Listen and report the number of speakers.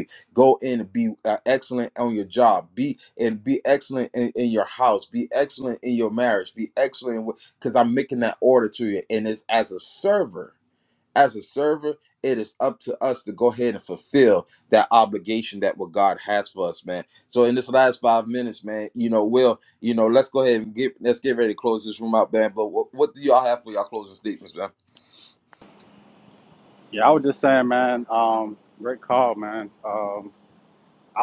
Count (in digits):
2